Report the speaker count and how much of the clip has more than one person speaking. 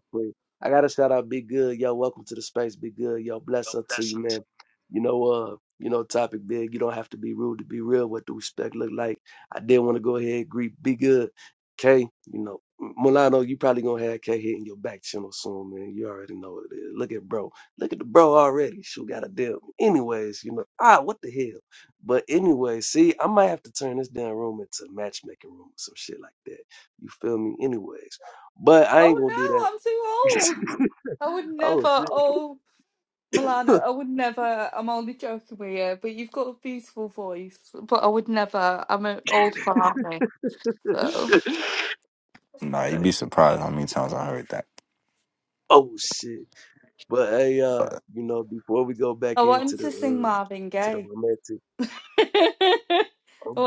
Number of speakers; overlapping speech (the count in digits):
3, about 5%